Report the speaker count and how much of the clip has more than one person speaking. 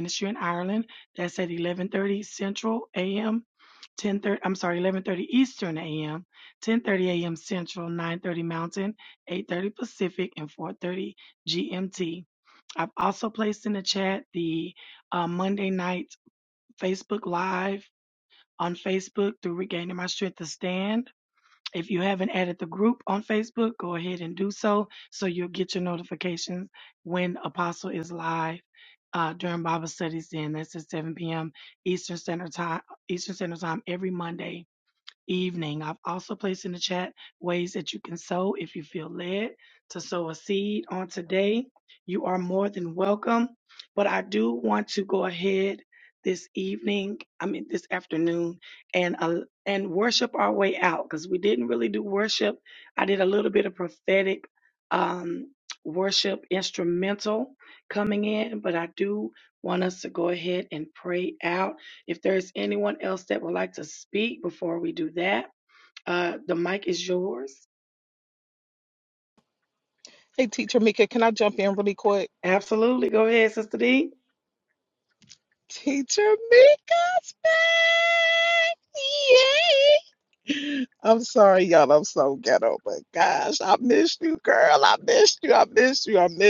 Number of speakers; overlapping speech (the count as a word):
two, no overlap